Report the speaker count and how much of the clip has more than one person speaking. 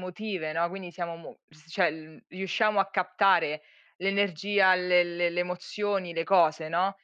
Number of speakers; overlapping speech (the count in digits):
1, no overlap